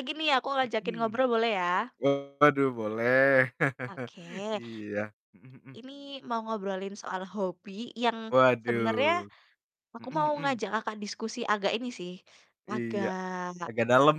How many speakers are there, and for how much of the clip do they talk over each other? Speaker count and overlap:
two, about 14%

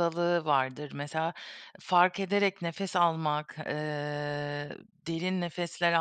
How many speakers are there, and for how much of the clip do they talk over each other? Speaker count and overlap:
one, no overlap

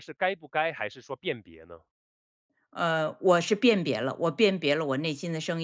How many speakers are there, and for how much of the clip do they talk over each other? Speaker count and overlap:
two, no overlap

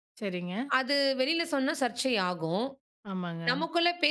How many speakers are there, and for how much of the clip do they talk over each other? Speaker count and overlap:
two, about 4%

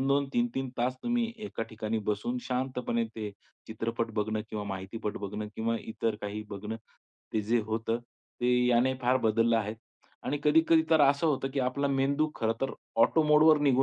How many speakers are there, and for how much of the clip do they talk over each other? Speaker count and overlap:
one, no overlap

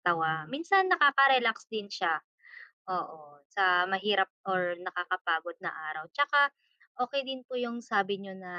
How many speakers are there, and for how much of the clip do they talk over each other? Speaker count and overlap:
one, no overlap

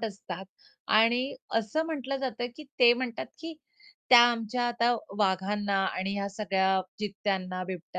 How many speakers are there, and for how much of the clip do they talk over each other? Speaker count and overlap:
one, no overlap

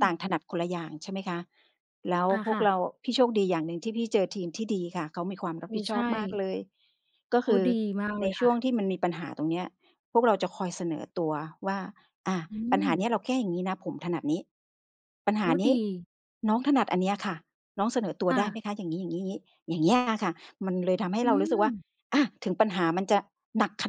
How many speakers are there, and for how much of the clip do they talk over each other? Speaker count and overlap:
two, about 12%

